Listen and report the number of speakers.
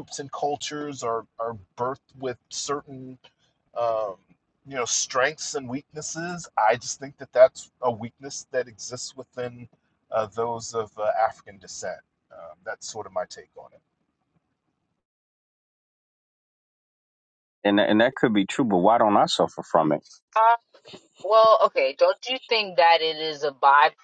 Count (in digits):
3